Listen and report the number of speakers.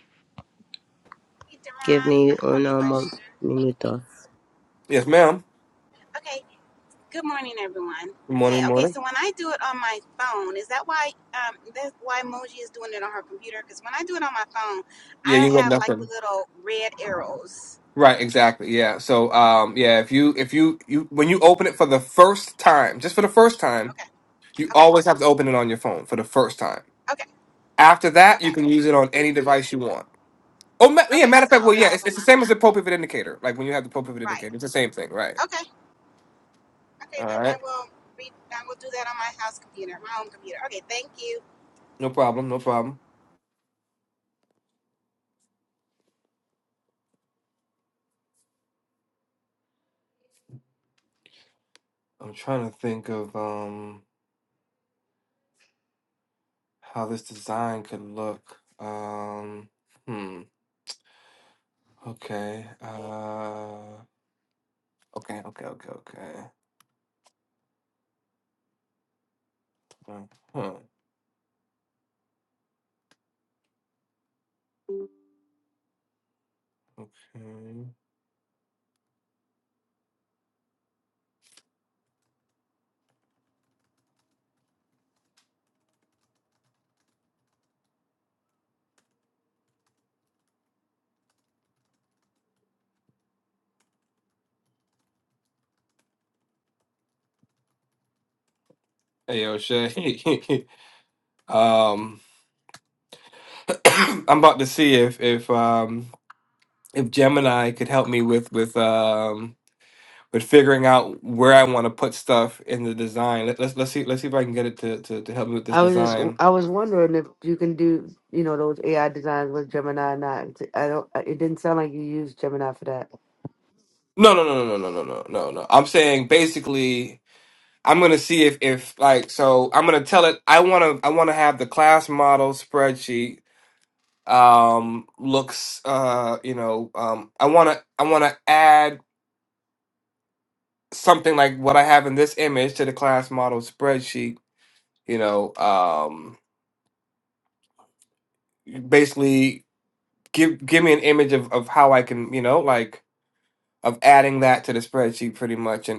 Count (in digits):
4